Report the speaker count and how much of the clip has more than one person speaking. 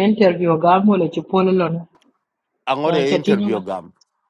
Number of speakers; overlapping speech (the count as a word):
two, about 17%